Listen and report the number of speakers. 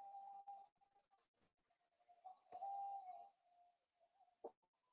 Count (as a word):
zero